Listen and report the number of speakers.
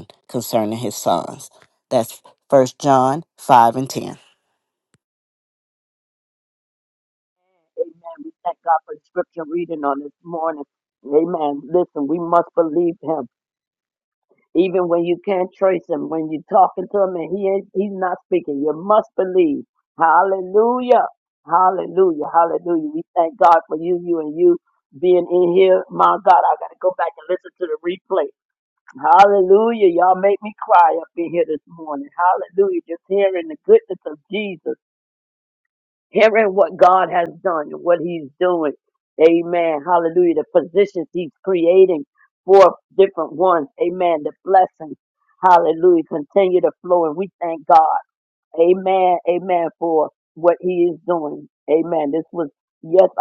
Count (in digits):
2